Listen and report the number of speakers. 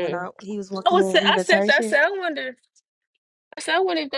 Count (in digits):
2